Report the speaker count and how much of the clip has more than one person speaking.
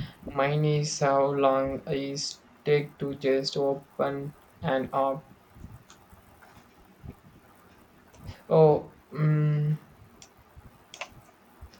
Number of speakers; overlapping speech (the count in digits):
1, no overlap